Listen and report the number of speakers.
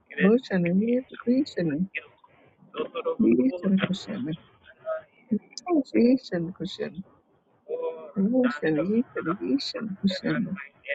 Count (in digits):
1